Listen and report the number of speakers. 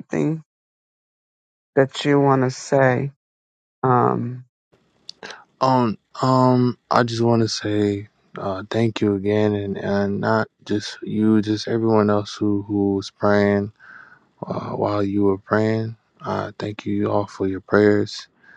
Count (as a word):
two